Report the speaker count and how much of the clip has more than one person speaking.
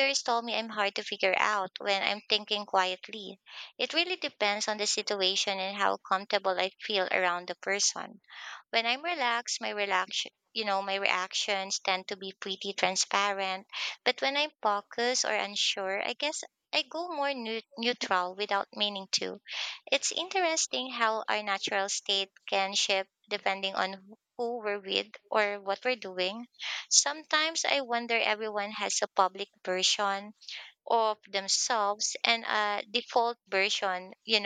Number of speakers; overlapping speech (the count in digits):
1, no overlap